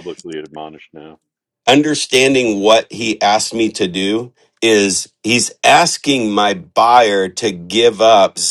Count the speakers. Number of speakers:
2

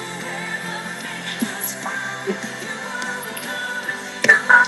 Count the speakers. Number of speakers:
0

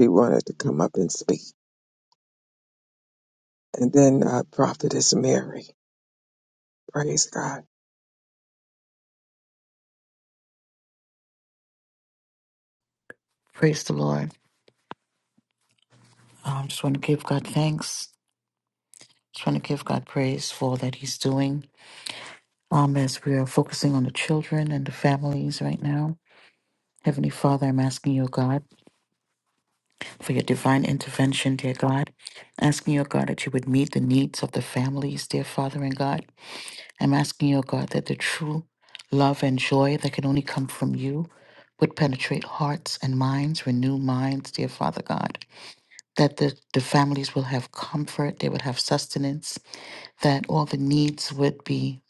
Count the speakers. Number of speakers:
2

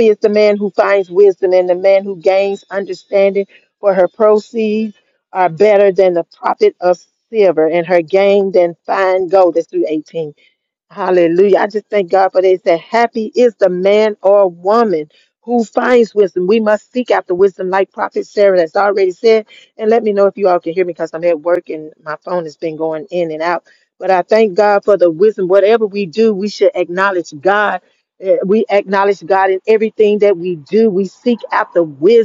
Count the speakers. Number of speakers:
1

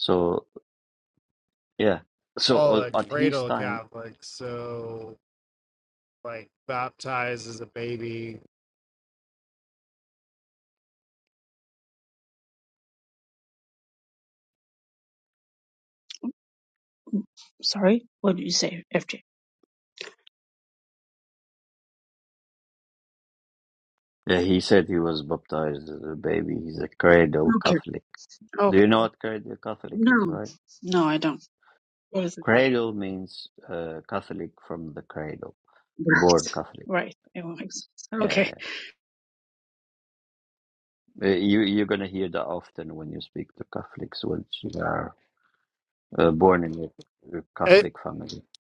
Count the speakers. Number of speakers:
3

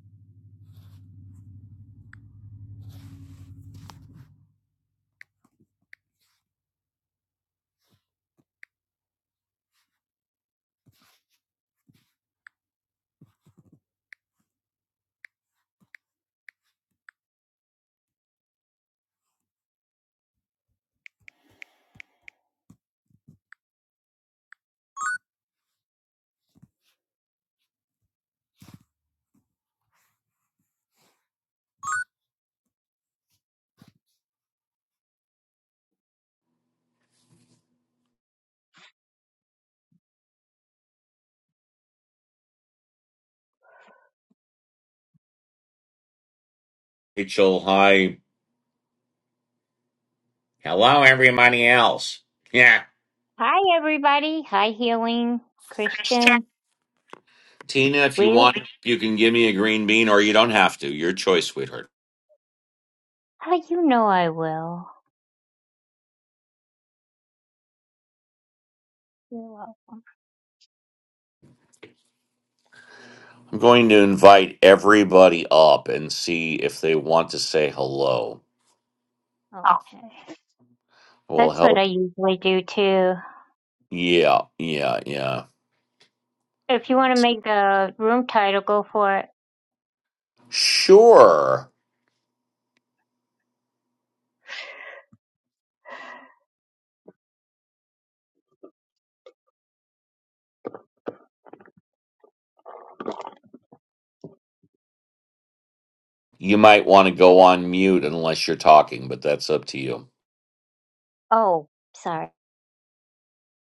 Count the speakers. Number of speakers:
2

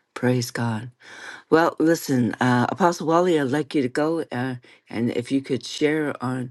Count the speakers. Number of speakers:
1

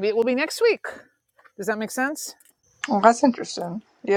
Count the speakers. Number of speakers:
2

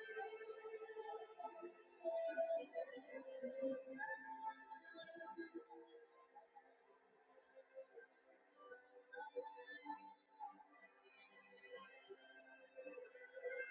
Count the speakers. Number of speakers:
0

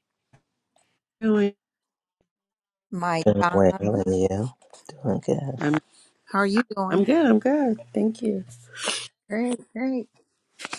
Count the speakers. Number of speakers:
3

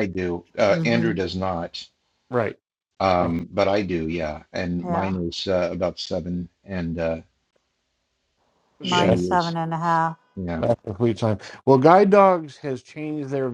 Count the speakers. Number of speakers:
3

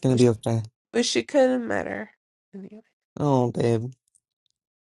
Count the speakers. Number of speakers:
2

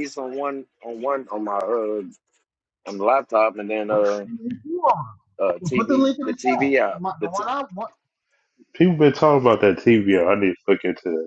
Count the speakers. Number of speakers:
3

